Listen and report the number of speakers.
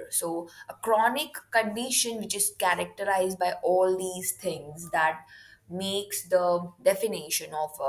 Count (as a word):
one